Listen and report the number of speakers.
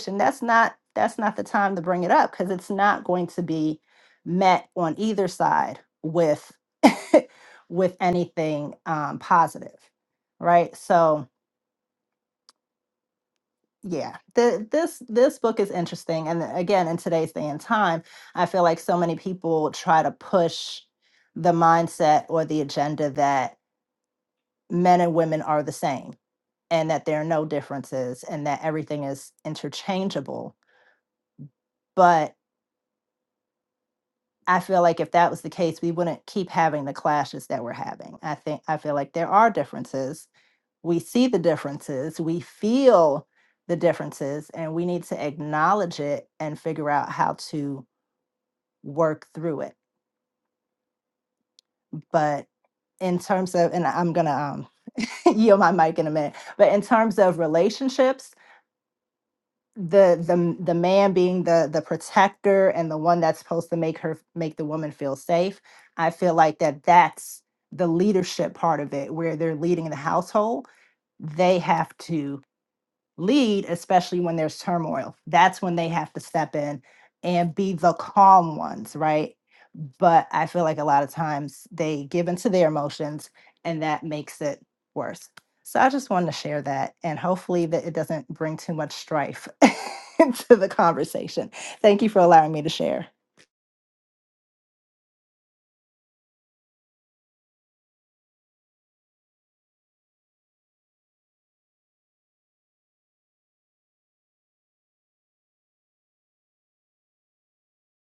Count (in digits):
1